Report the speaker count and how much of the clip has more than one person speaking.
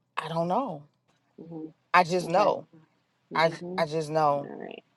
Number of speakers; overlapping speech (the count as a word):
two, about 18%